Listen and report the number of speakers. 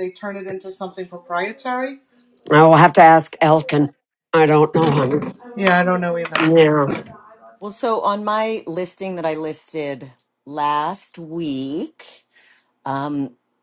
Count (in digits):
3